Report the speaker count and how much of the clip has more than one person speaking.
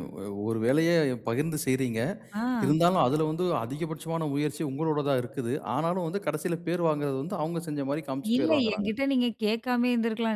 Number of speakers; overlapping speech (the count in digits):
2, about 7%